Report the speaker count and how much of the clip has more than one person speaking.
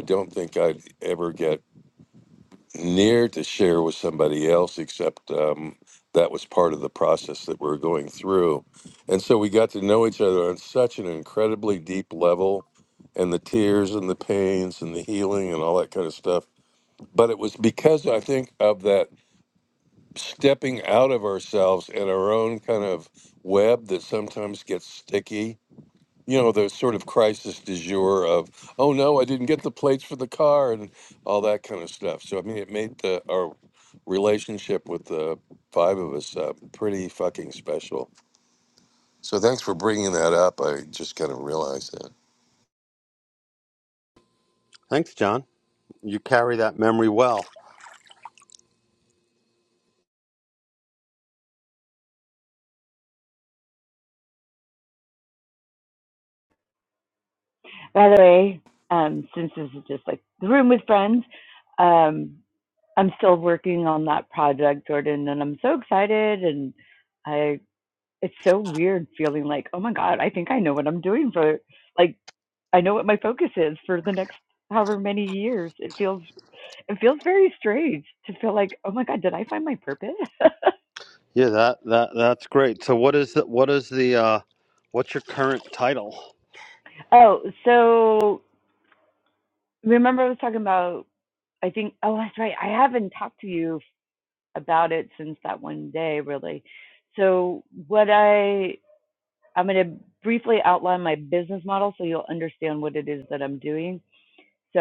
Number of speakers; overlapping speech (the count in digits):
3, no overlap